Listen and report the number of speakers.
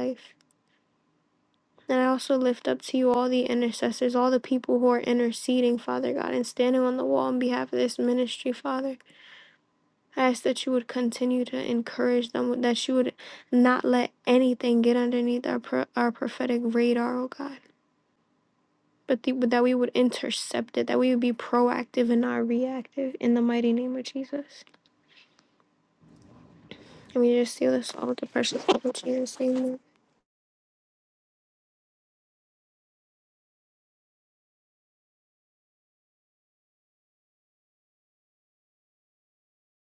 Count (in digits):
1